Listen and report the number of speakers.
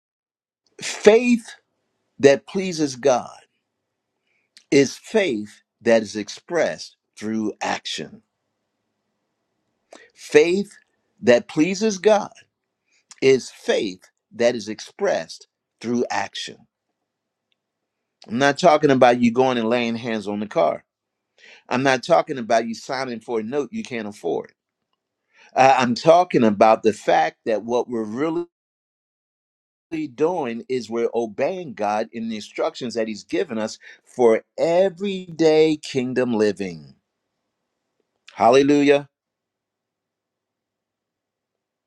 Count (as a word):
one